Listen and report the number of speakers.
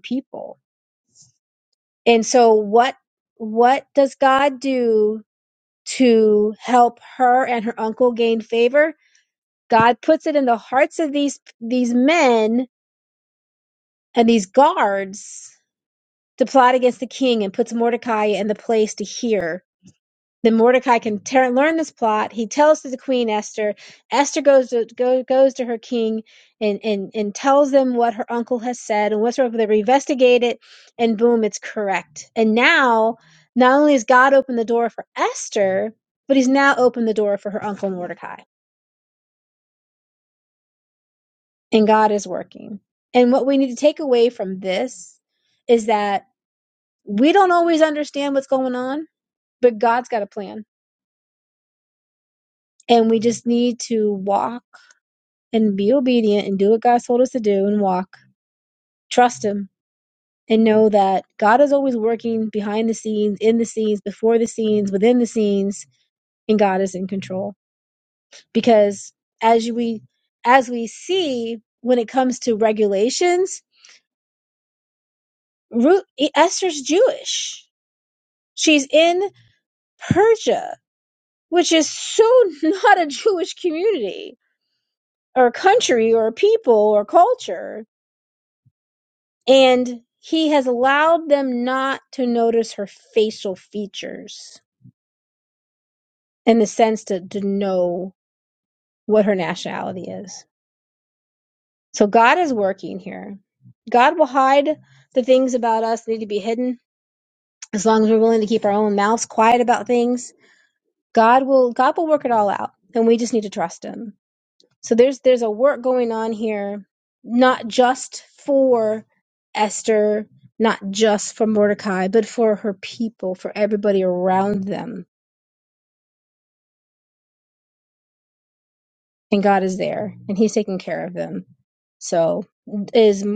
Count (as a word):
one